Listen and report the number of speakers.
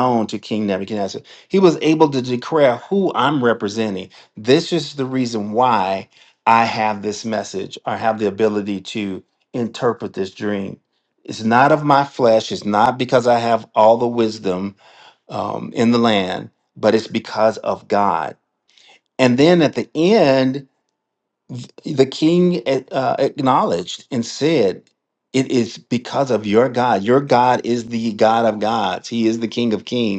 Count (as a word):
one